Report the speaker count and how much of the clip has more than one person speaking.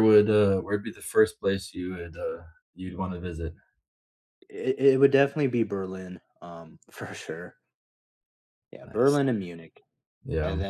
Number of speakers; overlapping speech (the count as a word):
two, about 5%